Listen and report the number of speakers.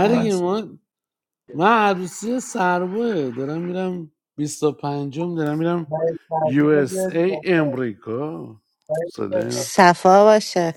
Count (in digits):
3